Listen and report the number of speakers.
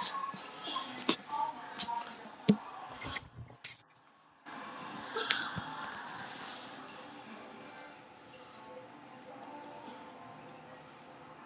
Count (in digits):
0